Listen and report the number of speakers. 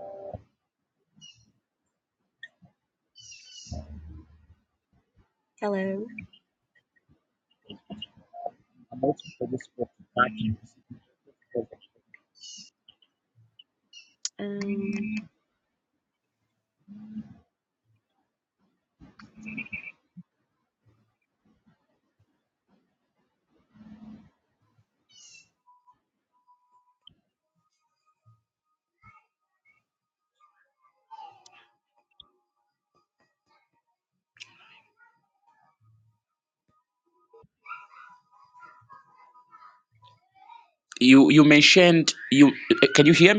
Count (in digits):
2